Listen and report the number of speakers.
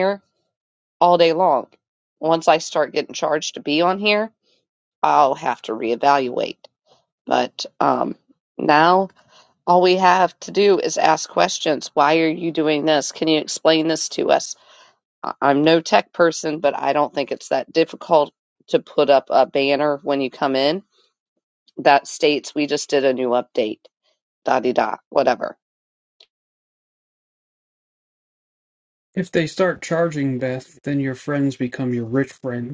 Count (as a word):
two